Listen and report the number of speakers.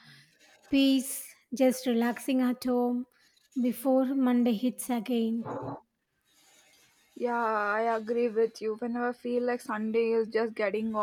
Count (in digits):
2